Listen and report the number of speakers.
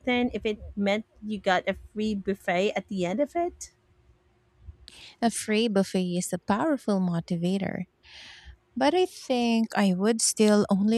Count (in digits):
2